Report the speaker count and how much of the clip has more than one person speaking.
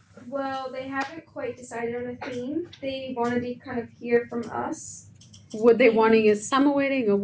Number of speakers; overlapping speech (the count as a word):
two, about 8%